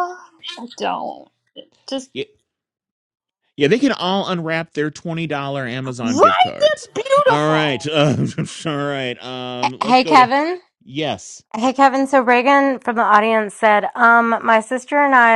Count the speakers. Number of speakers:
three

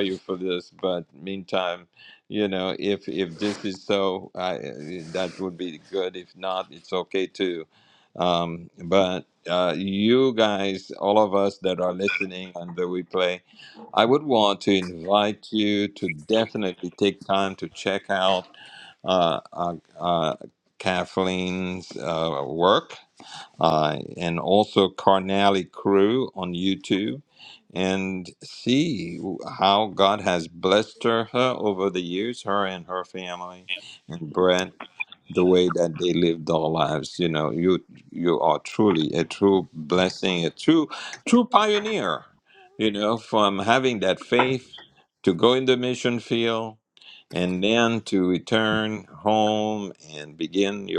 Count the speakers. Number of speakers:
one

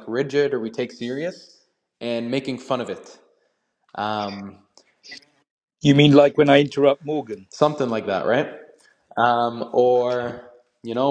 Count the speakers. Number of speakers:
two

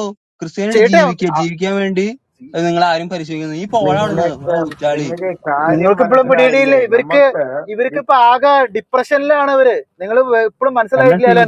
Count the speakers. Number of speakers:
three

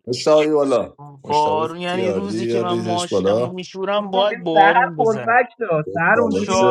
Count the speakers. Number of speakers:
three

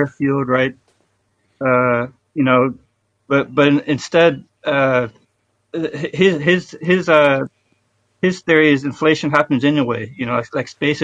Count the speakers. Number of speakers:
one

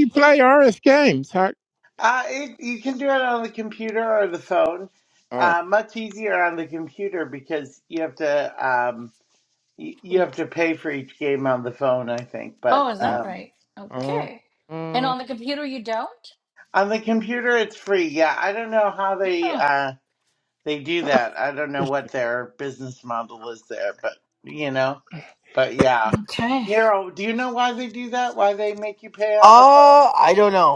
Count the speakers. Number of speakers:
four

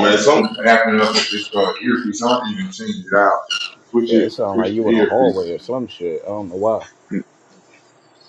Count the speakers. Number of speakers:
two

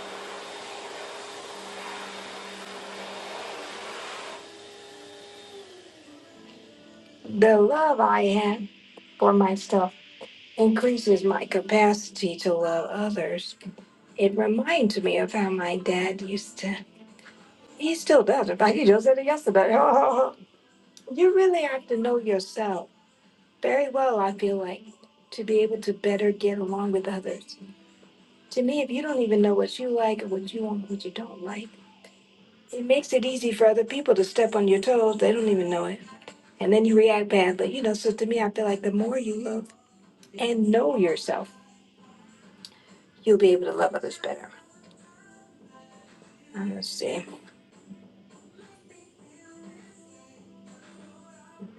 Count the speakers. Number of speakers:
one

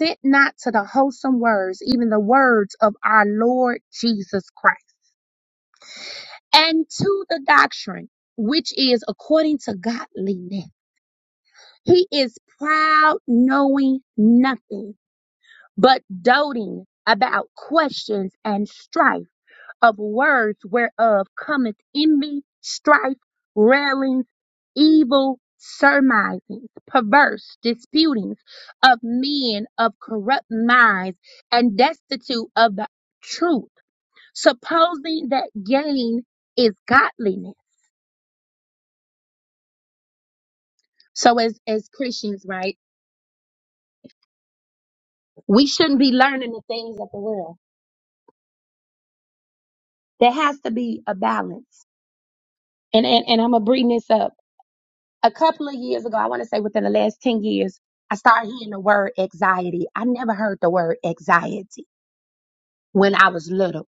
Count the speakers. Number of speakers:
one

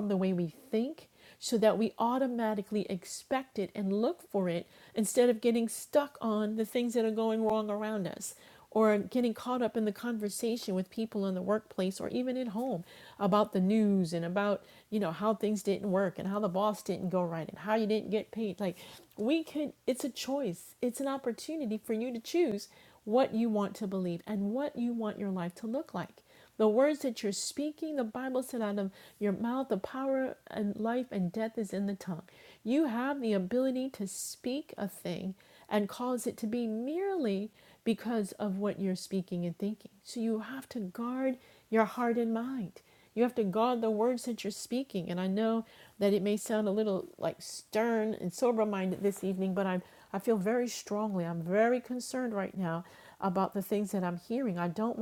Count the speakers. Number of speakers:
one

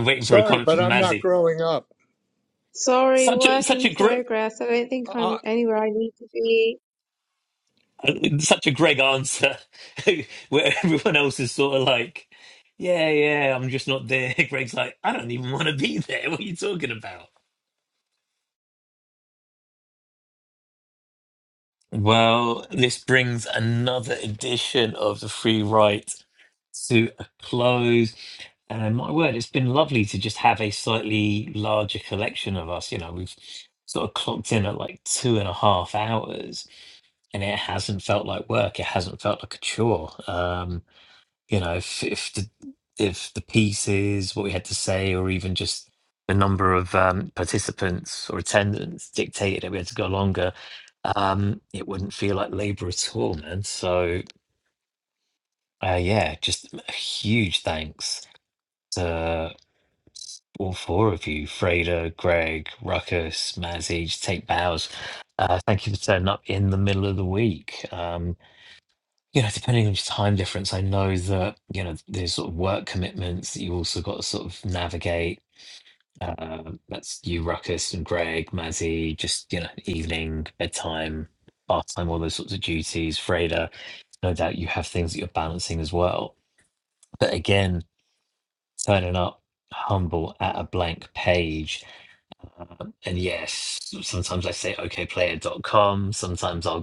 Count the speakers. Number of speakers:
three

